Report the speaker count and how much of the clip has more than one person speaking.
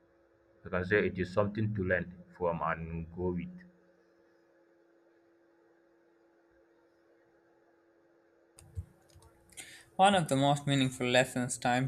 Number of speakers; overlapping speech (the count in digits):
2, no overlap